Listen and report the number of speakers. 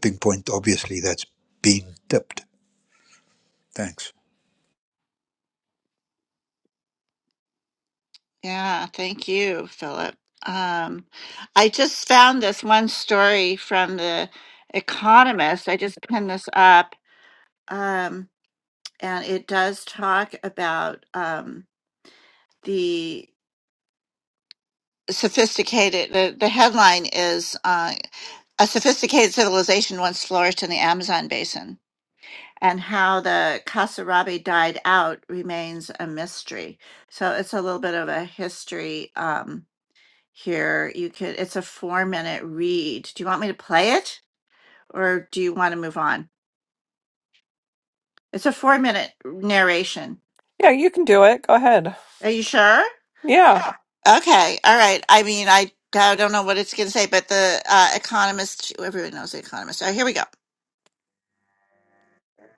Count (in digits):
3